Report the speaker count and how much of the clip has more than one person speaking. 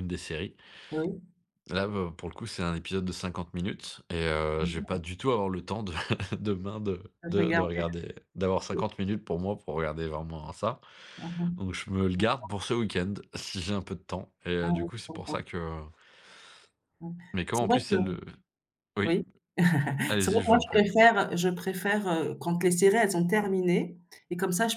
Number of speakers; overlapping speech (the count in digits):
2, about 11%